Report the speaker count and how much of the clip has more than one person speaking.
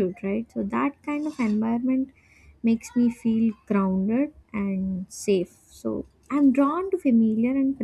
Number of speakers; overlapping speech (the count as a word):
one, no overlap